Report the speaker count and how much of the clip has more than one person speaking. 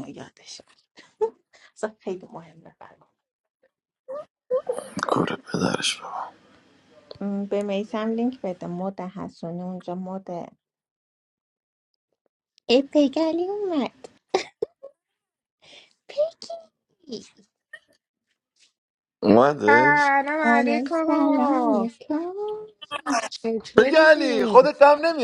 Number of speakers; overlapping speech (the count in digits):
3, about 8%